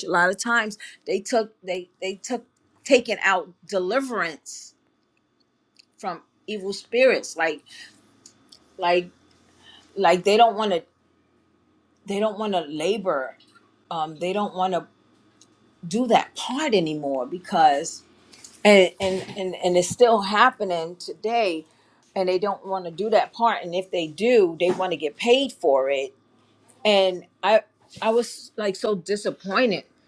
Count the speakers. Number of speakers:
one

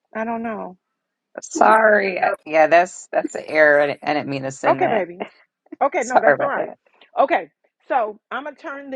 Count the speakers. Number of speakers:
two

